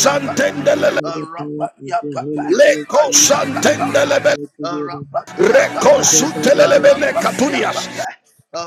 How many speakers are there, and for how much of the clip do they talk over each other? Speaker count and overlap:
three, about 52%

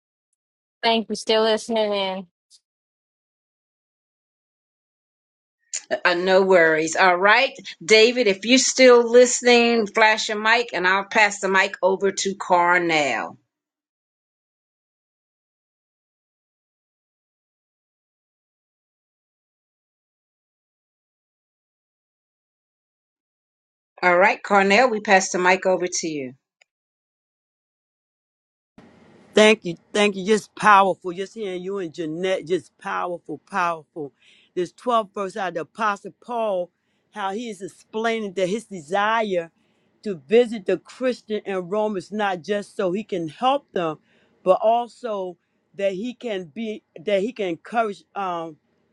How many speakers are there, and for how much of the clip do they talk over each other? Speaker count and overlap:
three, no overlap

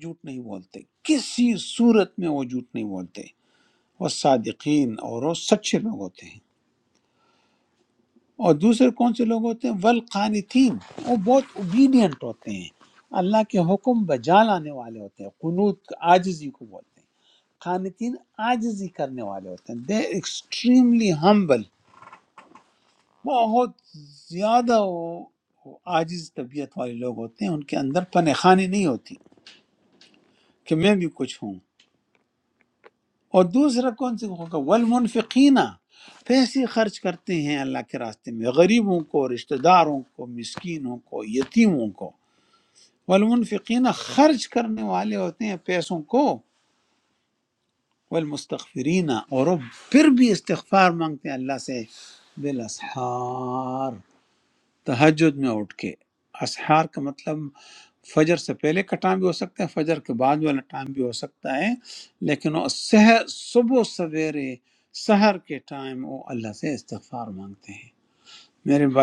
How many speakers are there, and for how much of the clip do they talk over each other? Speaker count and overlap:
one, no overlap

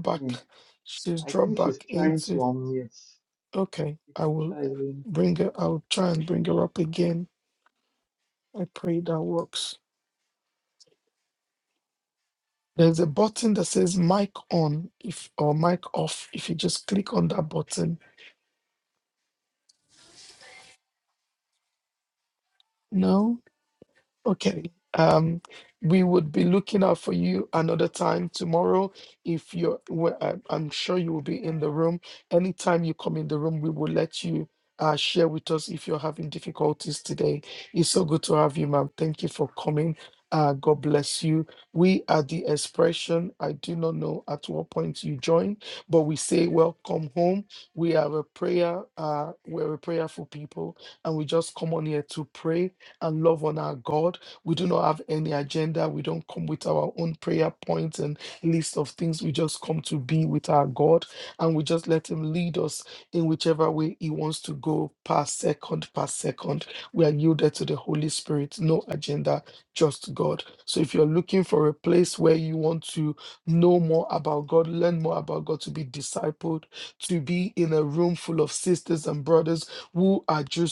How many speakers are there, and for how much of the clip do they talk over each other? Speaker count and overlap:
two, about 2%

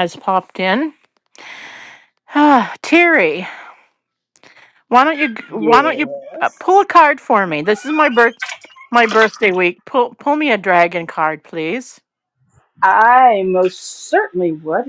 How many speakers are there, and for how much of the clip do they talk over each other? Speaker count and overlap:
two, about 4%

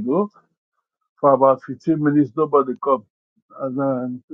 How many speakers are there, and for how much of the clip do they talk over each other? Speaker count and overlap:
one, no overlap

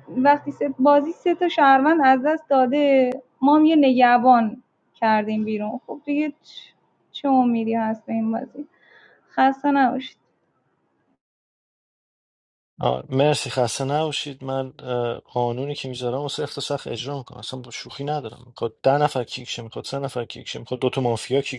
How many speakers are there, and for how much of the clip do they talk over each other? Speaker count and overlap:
two, no overlap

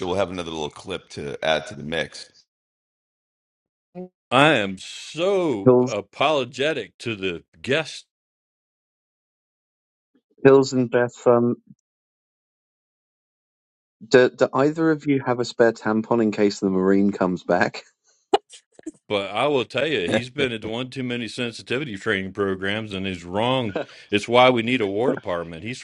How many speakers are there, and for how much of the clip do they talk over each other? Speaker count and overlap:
three, about 1%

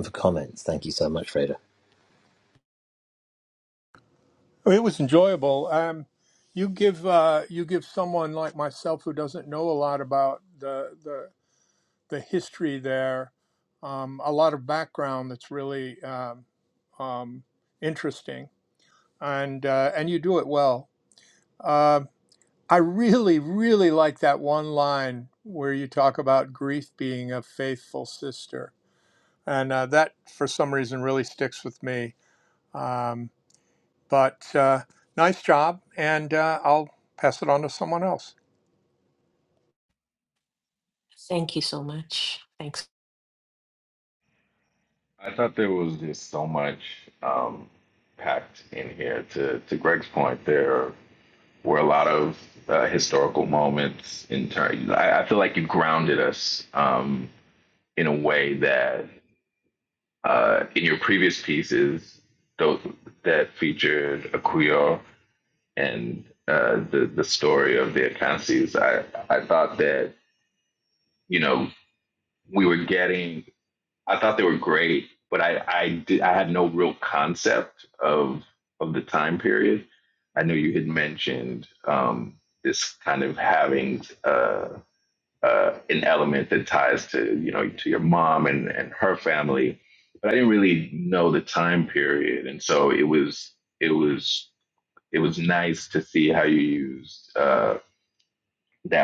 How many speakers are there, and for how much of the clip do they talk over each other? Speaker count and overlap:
four, no overlap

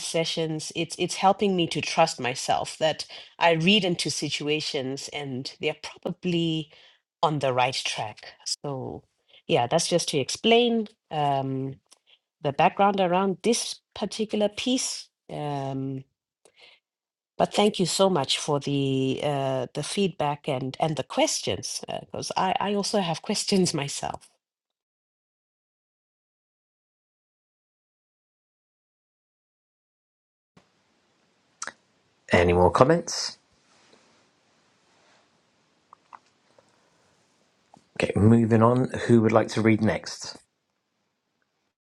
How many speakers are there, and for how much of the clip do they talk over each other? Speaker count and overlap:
two, no overlap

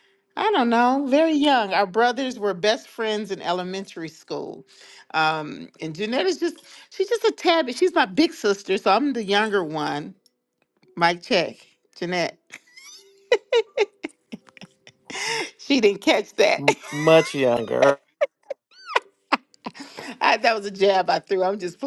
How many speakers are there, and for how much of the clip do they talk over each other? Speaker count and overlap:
two, under 1%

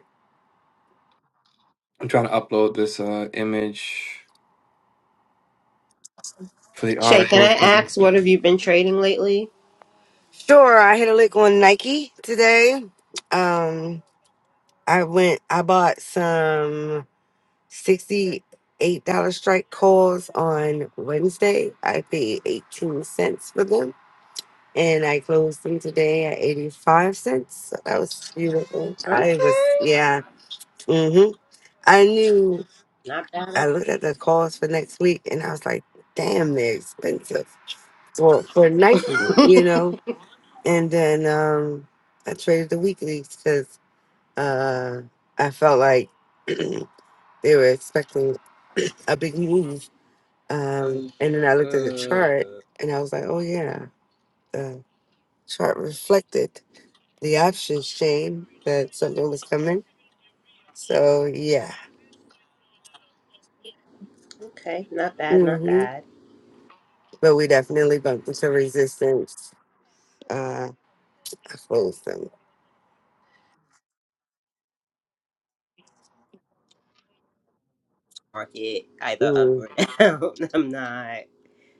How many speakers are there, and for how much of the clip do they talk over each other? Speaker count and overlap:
three, about 3%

